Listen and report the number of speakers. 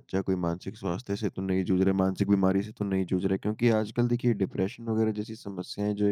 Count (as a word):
one